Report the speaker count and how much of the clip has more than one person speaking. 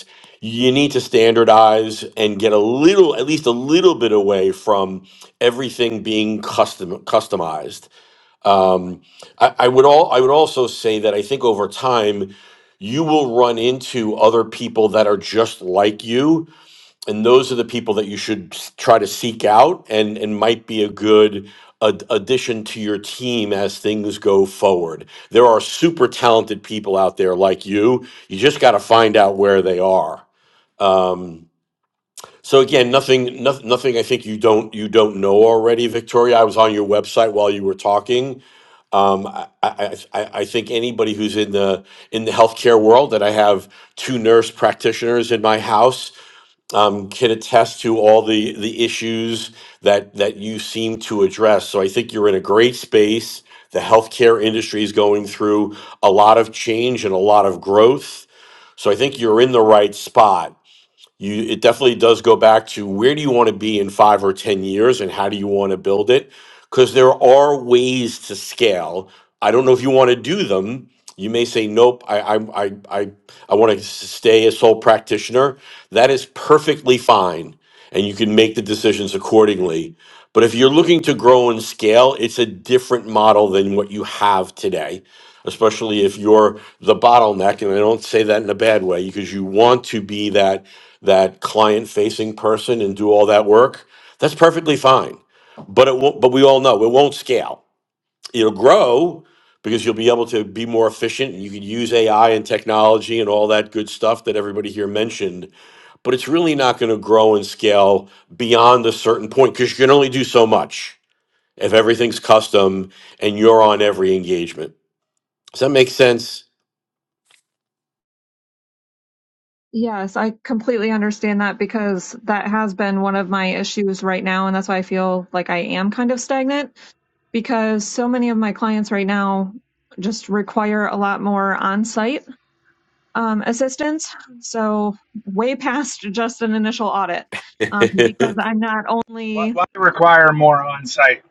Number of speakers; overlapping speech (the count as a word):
three, under 1%